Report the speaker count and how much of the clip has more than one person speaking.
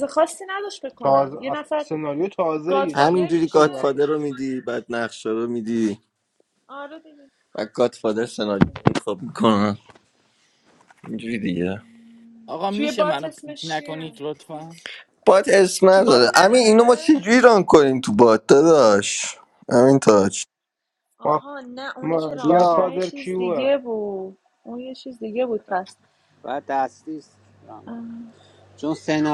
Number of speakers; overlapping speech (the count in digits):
5, about 21%